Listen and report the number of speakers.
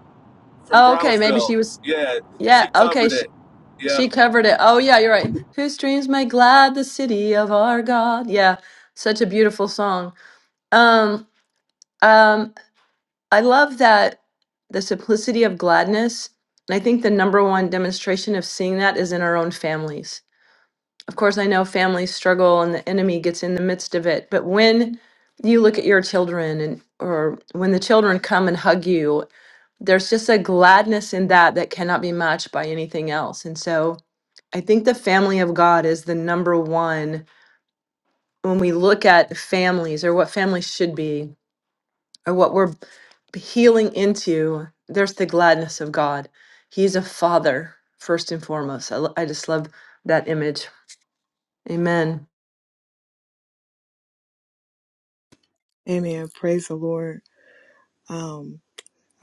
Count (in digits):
3